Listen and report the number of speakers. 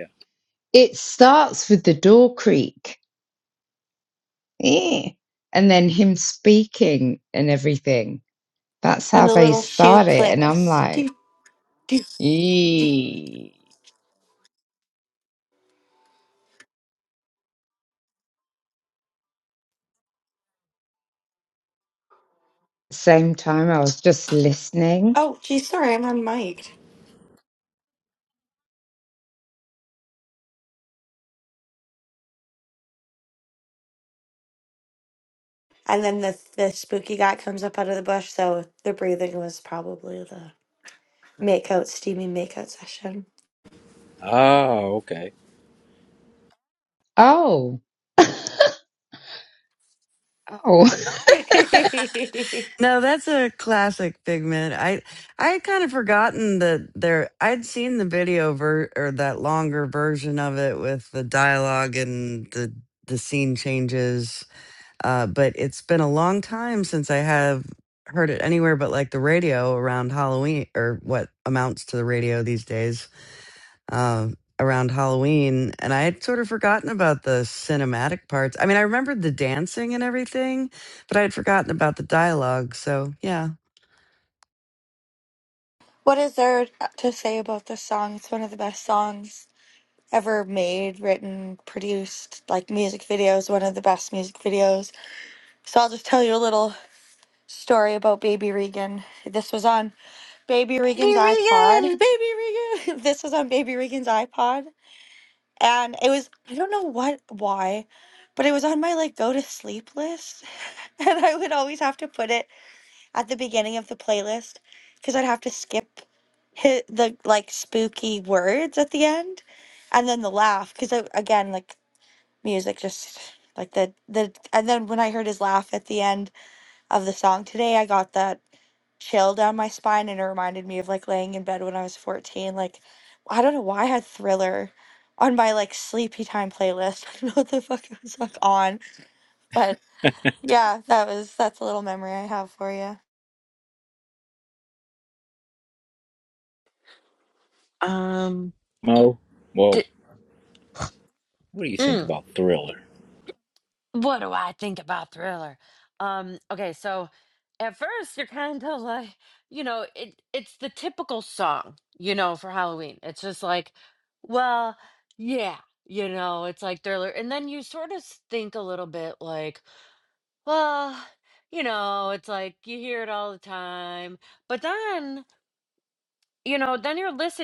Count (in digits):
5